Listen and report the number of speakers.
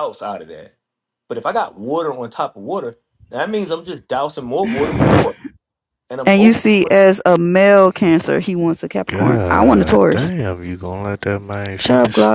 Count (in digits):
3